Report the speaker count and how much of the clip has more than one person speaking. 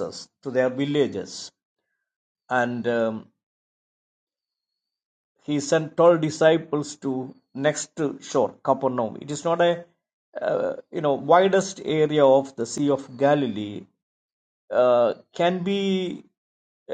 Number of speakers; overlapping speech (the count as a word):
one, no overlap